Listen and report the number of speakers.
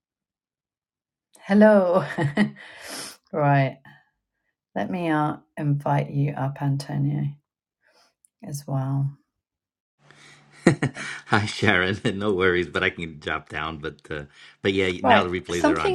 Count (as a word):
two